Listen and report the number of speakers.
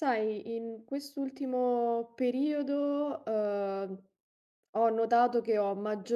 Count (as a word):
one